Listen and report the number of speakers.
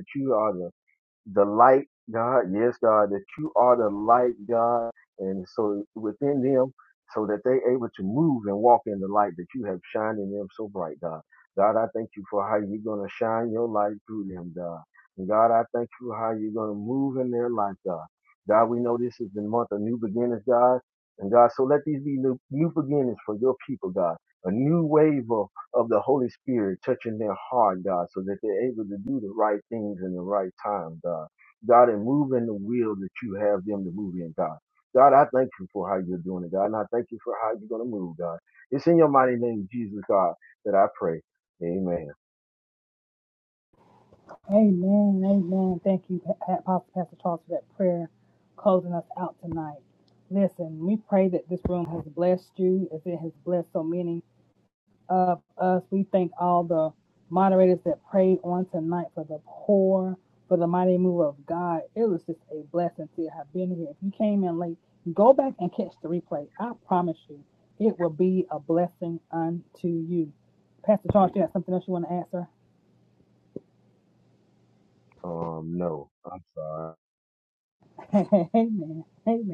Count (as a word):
two